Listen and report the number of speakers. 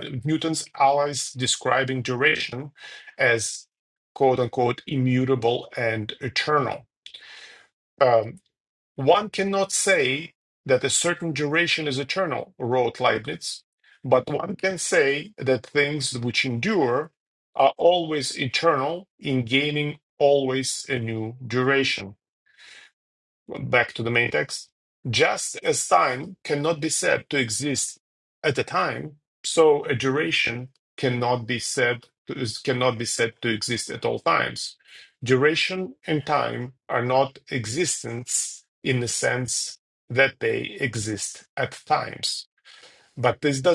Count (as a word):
one